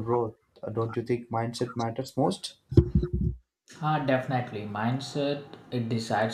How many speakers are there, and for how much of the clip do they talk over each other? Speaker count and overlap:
two, no overlap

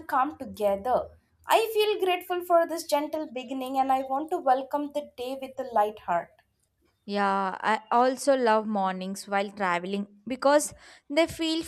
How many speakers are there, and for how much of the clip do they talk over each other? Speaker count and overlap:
two, no overlap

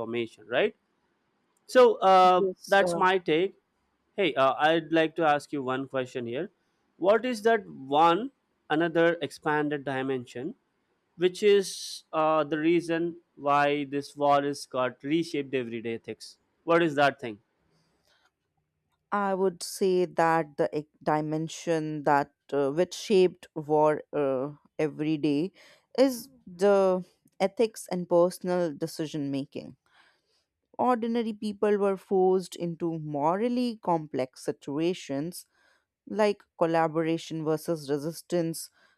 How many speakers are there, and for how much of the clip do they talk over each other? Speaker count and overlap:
two, about 2%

